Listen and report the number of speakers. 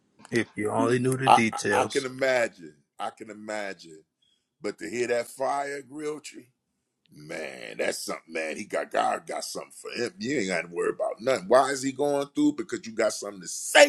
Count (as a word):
two